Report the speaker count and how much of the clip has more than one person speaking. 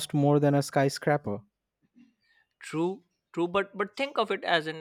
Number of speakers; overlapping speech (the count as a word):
two, no overlap